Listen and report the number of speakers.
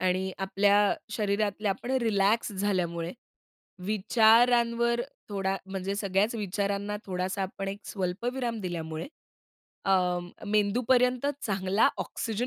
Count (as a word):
one